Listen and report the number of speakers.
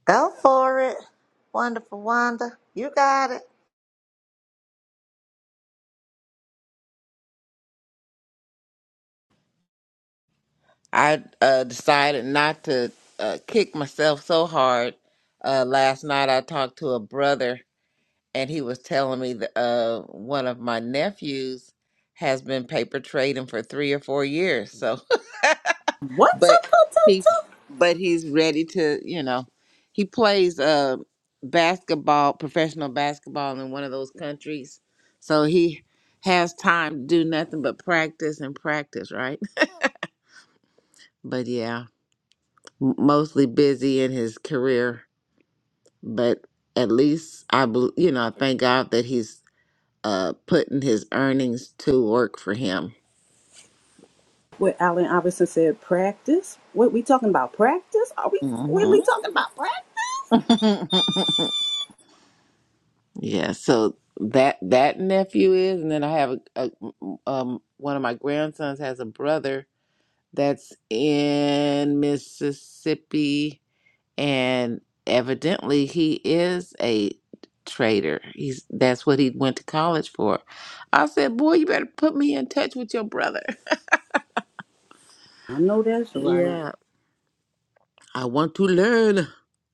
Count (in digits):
3